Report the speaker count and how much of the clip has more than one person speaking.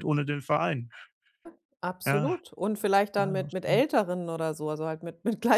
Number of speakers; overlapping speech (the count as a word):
two, about 17%